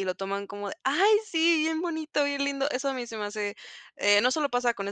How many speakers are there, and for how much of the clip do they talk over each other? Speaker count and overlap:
1, no overlap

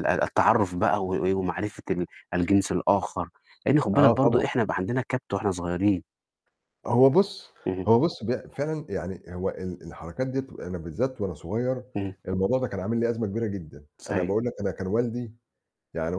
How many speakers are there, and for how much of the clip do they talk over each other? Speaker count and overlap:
2, about 5%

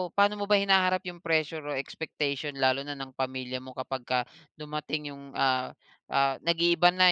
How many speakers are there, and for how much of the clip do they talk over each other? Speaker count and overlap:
1, no overlap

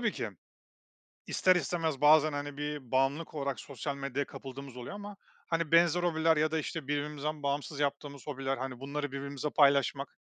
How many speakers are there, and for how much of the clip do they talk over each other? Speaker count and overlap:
1, no overlap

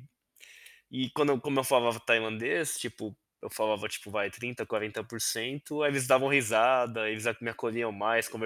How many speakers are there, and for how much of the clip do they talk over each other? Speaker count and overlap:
1, no overlap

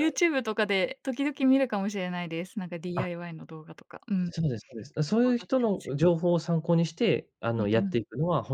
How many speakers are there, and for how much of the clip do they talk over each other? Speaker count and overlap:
2, about 18%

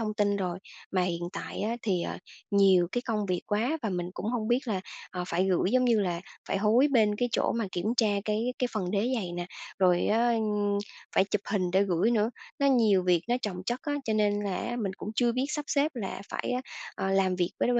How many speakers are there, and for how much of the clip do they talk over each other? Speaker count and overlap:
1, no overlap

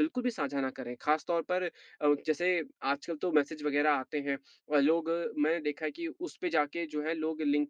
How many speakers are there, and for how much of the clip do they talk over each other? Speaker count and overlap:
1, no overlap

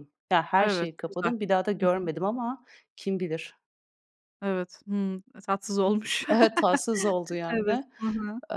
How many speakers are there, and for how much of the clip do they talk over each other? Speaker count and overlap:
2, about 17%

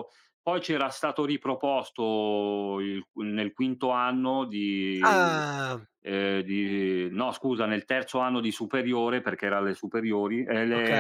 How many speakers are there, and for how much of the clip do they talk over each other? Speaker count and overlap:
2, about 6%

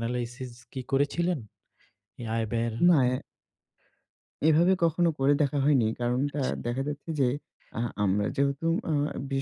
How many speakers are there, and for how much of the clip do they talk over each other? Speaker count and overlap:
2, about 3%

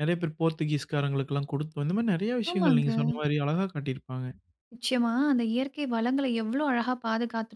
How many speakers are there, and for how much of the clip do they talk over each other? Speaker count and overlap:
2, about 6%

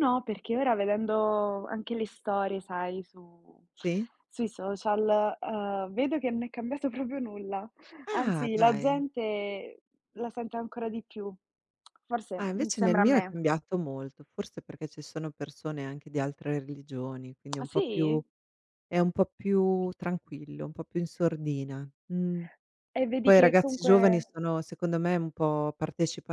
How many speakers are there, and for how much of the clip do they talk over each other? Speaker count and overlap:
2, about 12%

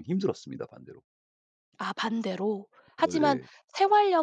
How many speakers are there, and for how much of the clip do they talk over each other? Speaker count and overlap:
2, about 9%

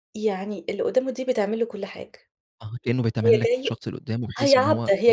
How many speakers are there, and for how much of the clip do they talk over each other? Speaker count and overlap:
2, about 26%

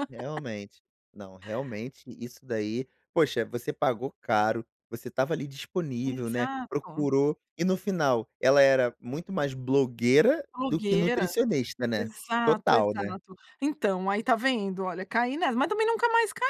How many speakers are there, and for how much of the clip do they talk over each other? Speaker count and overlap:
2, about 16%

